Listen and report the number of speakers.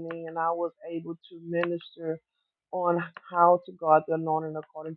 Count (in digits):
1